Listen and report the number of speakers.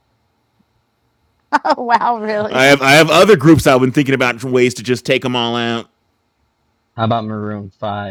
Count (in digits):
3